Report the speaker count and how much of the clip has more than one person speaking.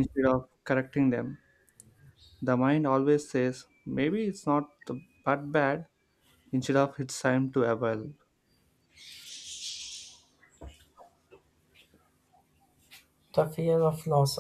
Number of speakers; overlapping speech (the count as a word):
two, no overlap